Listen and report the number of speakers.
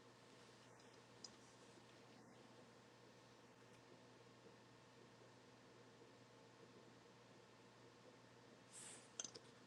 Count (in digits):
0